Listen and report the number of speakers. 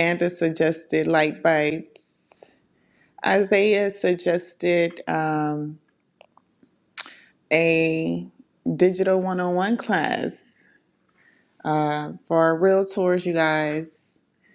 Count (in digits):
1